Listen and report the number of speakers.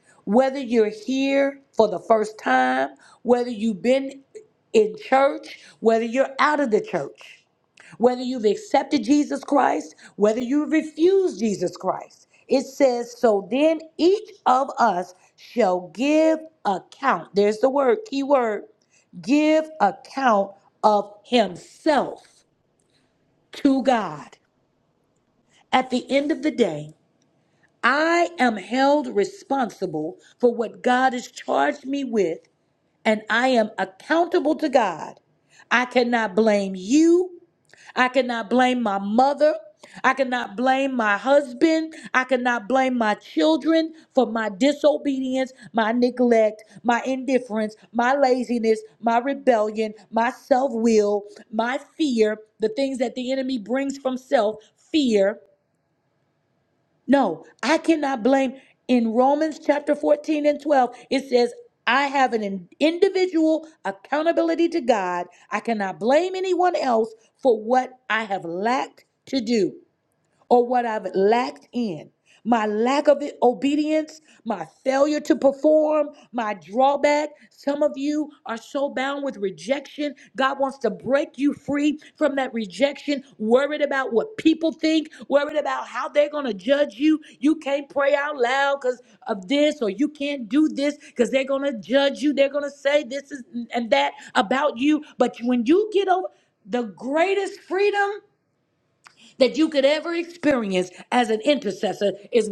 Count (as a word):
one